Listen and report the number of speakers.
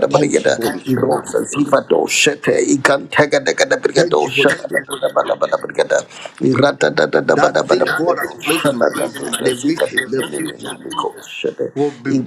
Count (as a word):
two